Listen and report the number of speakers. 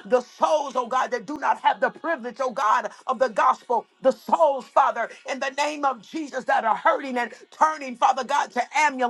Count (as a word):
one